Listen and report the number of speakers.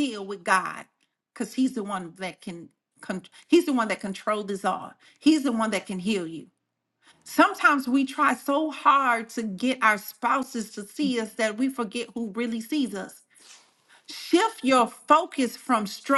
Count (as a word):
one